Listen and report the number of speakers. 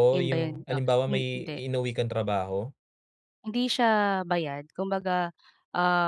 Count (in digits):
2